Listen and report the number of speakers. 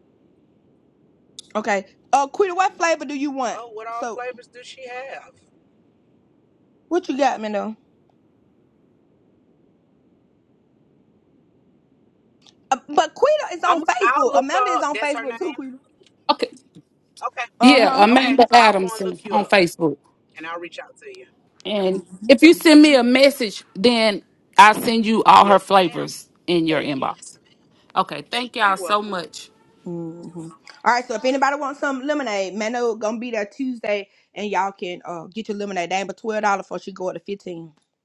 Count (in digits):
3